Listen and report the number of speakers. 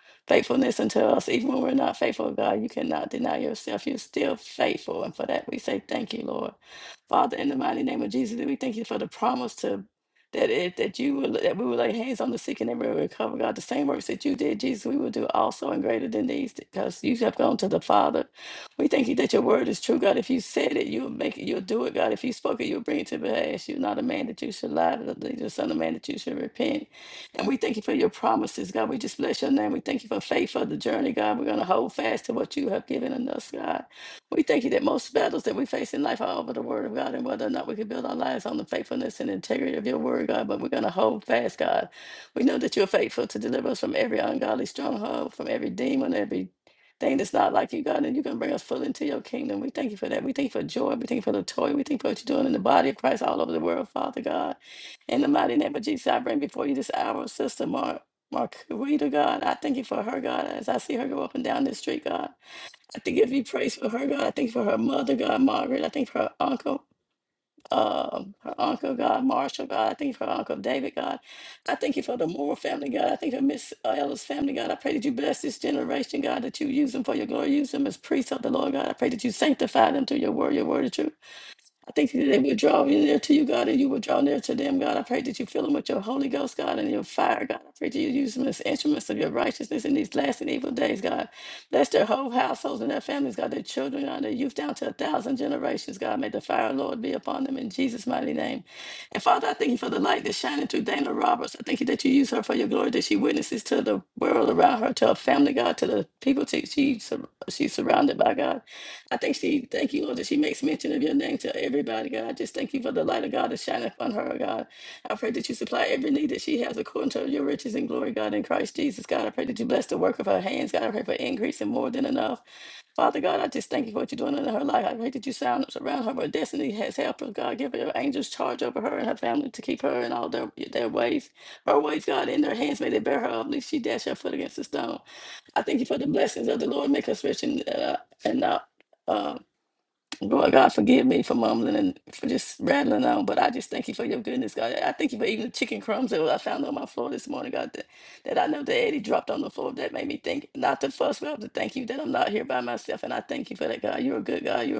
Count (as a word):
one